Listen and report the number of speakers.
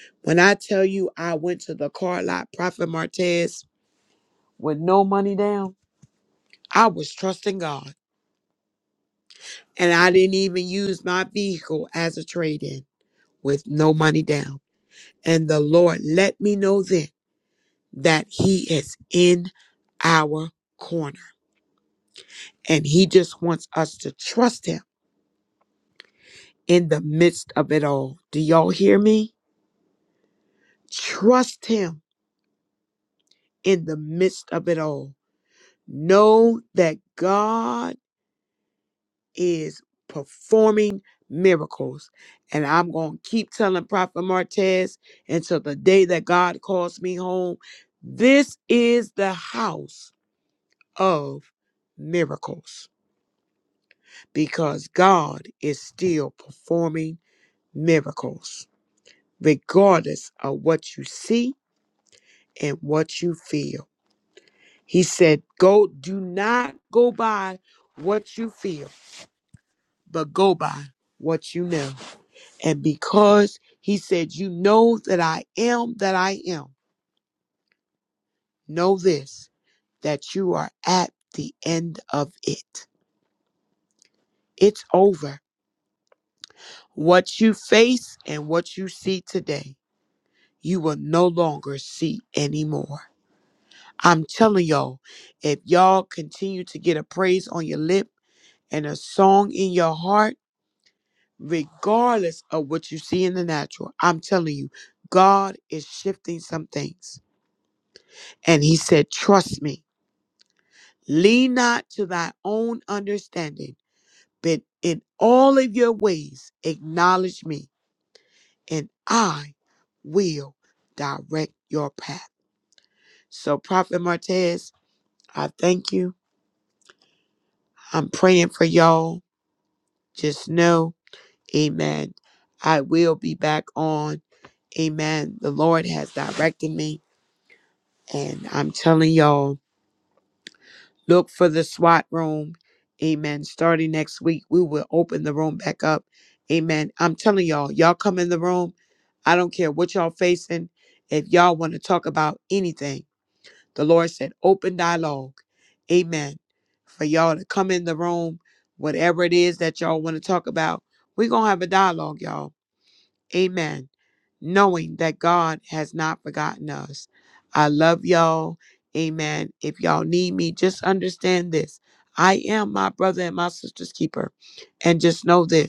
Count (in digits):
1